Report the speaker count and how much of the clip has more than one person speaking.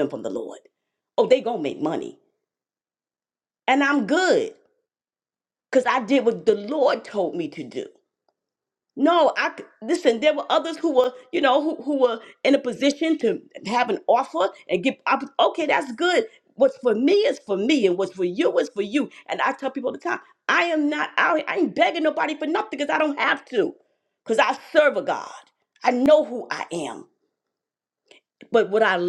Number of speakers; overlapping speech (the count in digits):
1, no overlap